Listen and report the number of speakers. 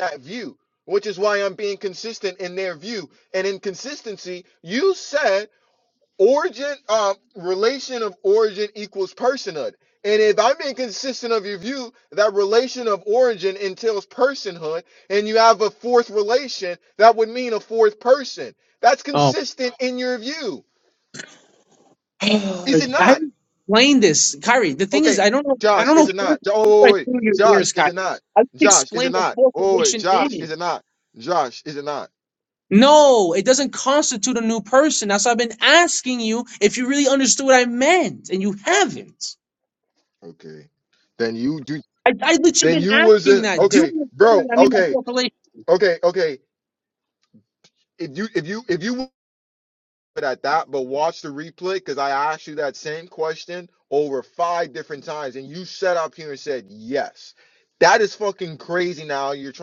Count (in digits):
2